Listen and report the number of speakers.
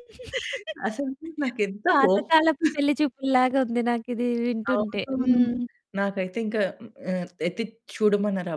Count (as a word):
two